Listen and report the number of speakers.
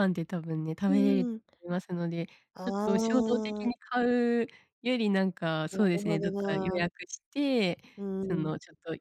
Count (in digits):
2